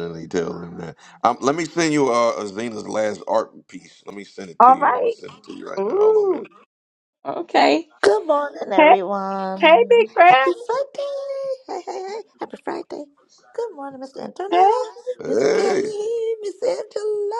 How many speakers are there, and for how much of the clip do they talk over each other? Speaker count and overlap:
three, about 16%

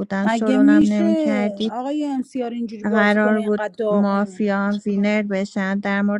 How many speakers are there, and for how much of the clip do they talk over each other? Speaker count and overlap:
two, about 49%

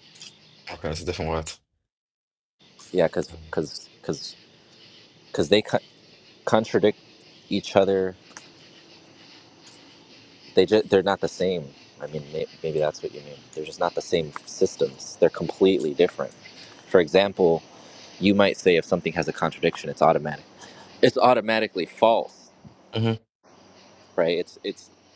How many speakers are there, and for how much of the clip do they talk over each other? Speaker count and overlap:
two, no overlap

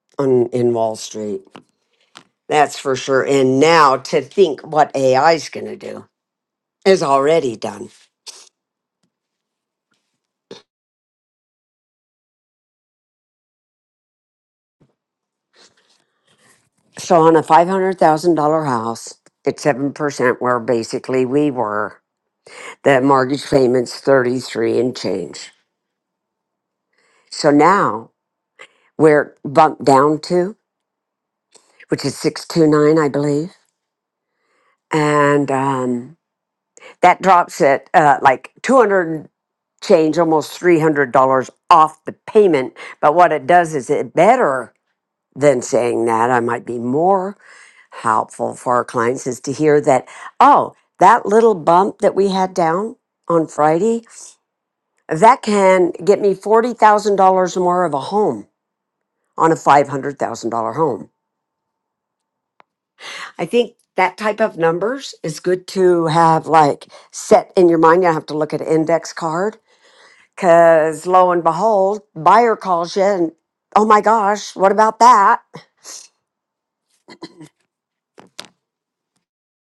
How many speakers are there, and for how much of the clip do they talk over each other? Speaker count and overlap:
one, no overlap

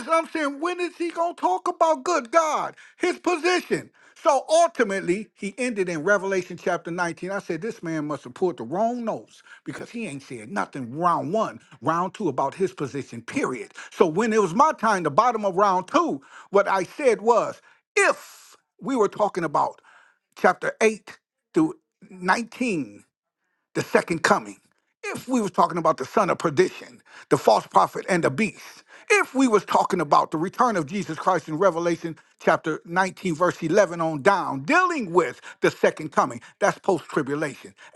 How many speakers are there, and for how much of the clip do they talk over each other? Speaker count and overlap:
one, no overlap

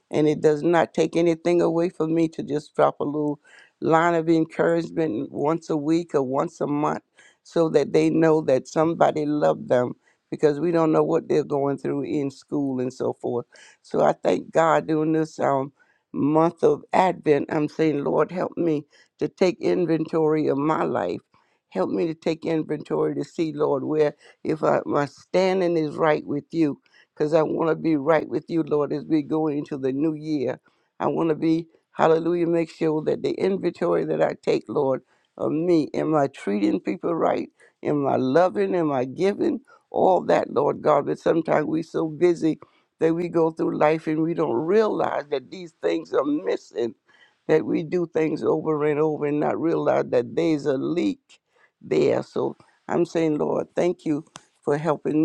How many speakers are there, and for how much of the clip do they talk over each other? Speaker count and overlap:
one, no overlap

